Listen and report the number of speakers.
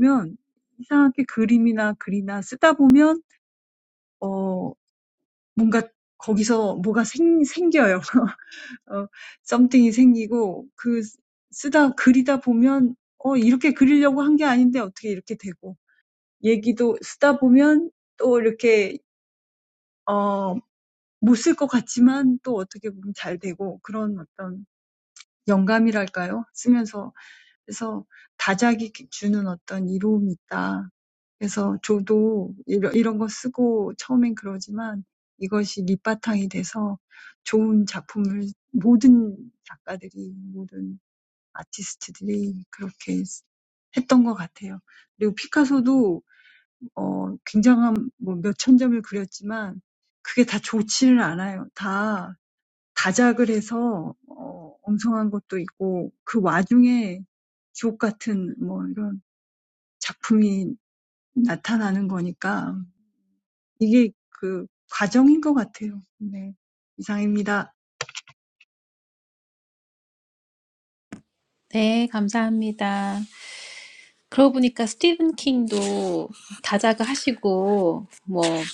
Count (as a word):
two